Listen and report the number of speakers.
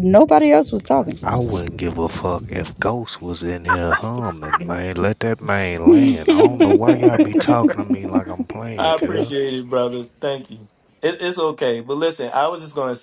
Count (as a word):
three